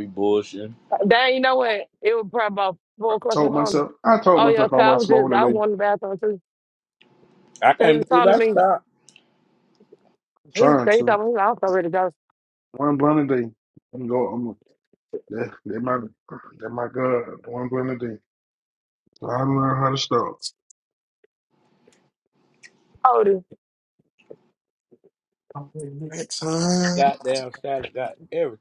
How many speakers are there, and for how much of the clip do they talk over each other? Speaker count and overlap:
three, about 11%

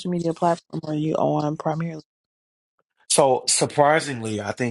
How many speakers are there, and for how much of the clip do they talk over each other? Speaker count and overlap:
two, no overlap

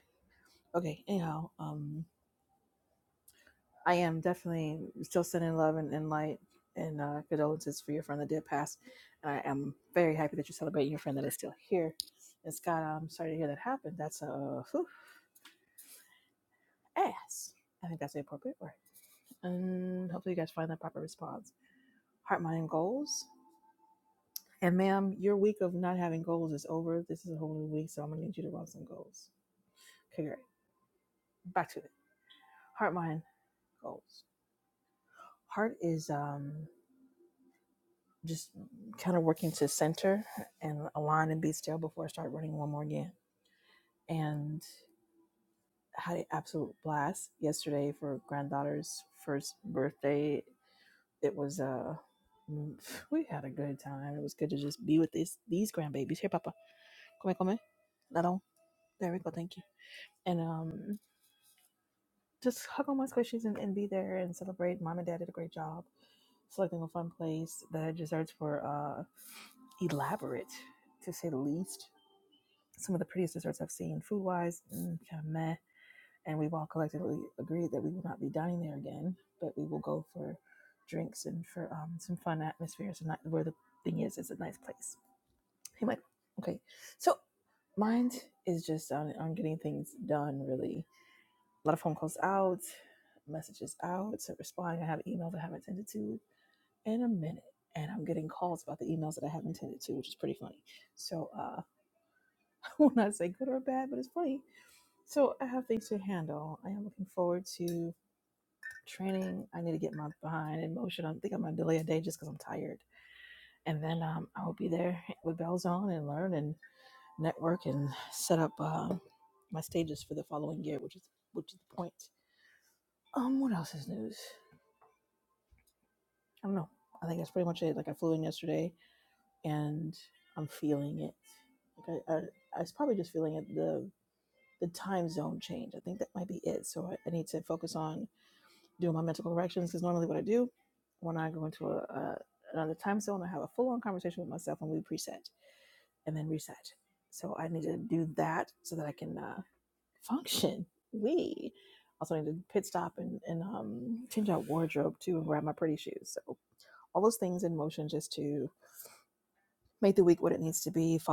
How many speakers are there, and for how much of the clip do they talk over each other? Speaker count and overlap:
one, no overlap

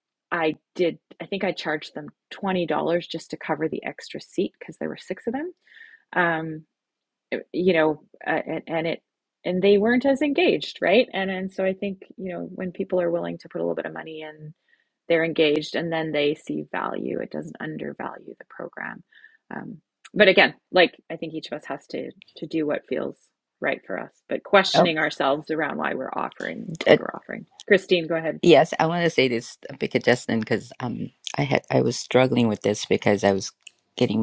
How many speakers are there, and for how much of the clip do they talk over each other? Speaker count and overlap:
two, about 1%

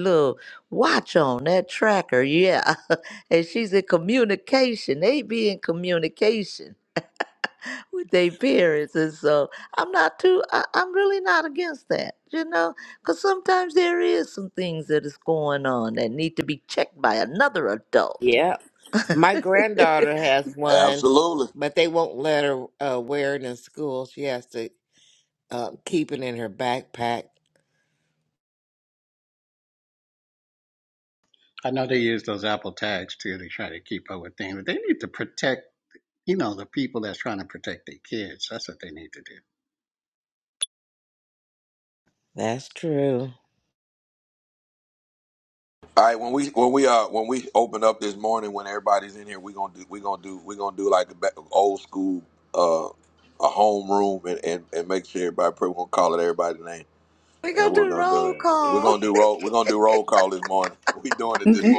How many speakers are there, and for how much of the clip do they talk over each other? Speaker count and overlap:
four, about 3%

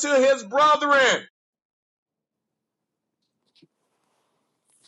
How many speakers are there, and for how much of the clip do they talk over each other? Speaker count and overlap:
one, no overlap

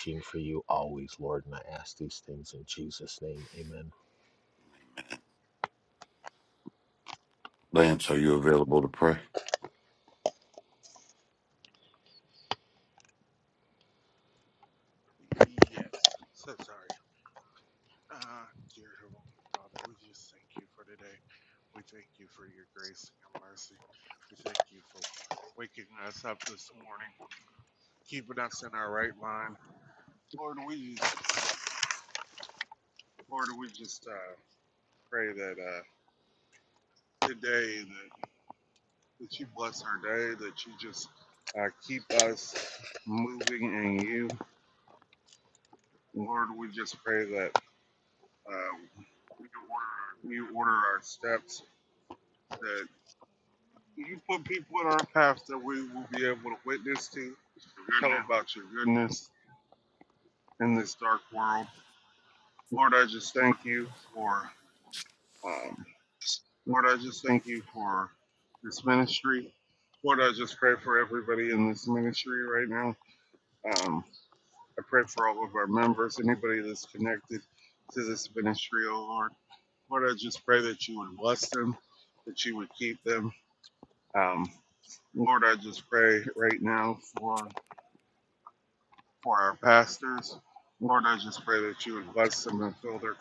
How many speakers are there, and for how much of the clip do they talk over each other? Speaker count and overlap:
three, no overlap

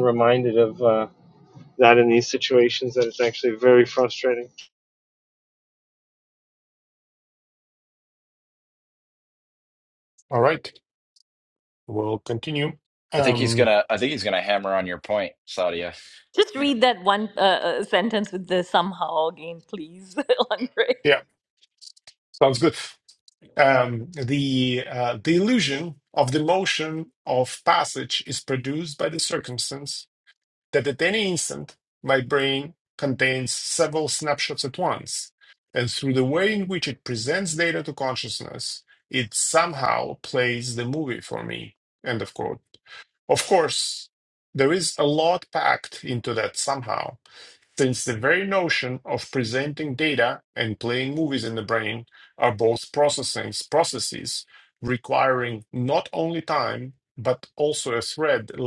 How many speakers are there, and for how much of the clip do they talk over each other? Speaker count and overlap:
four, about 1%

